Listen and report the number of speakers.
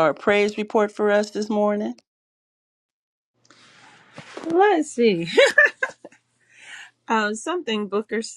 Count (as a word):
two